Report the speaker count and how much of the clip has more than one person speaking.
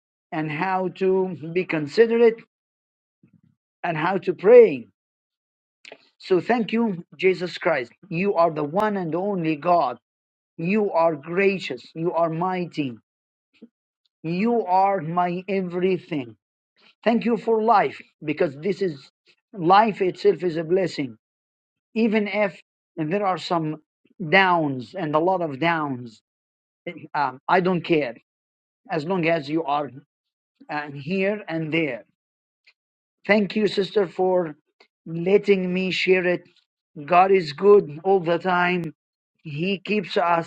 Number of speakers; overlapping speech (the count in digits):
1, no overlap